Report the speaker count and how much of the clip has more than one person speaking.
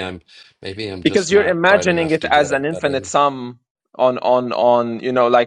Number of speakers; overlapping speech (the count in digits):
2, about 37%